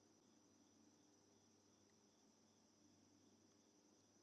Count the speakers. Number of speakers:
0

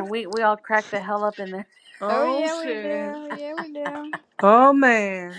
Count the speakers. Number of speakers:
3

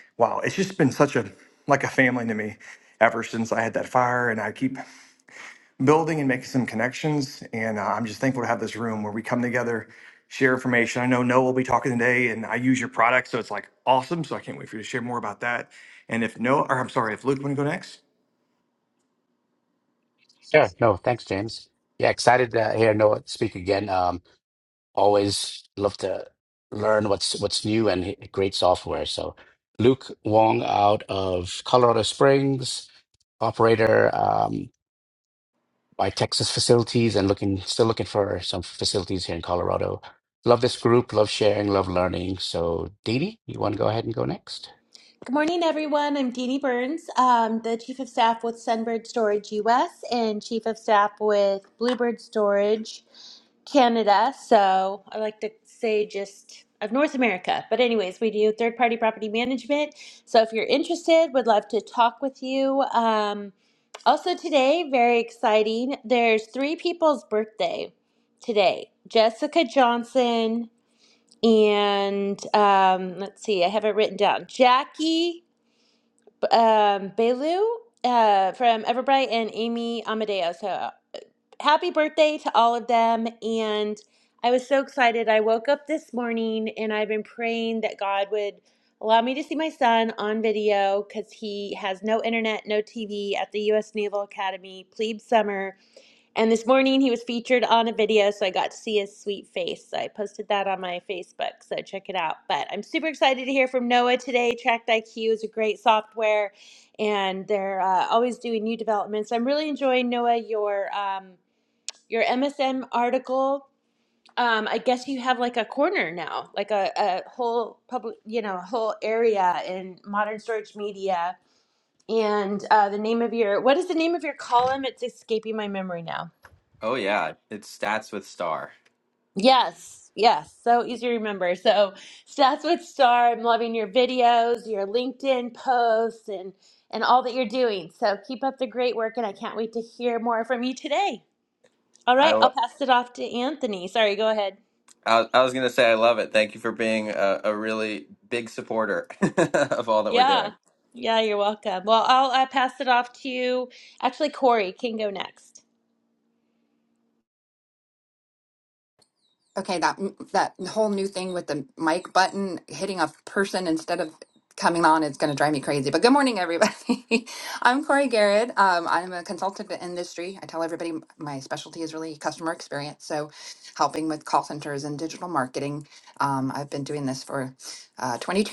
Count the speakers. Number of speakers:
5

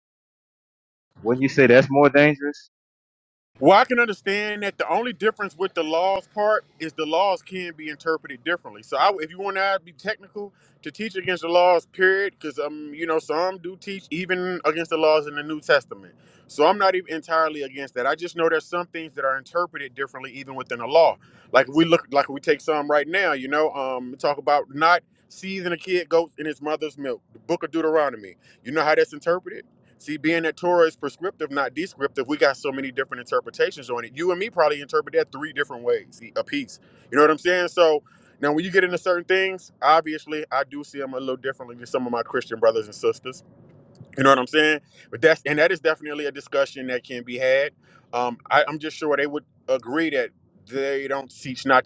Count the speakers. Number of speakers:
2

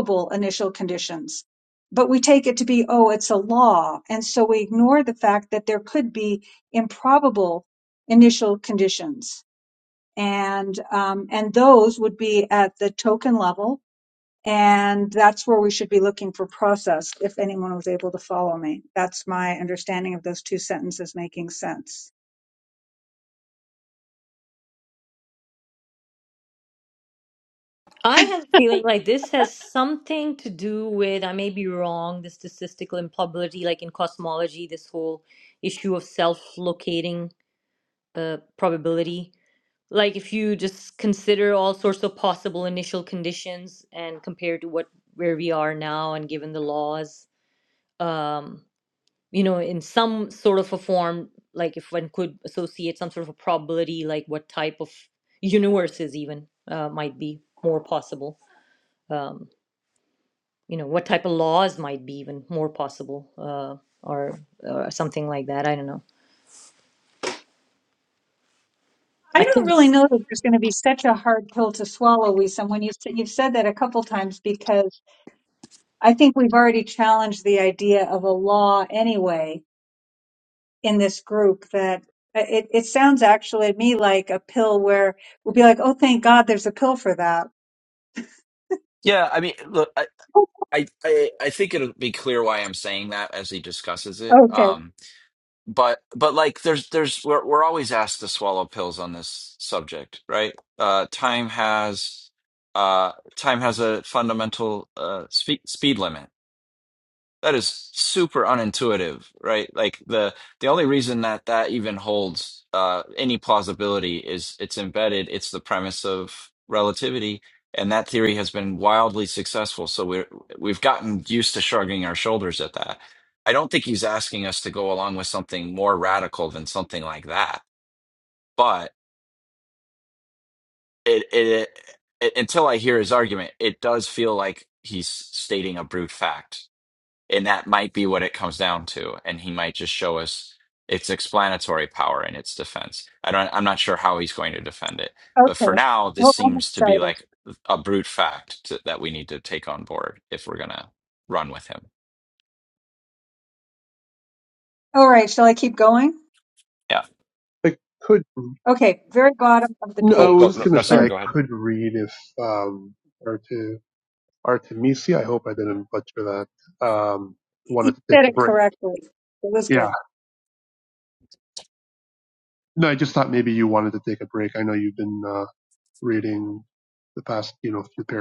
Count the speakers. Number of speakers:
4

